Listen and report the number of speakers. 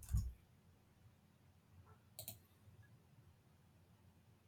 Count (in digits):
0